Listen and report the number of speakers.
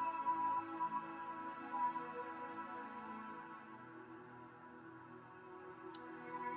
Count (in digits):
0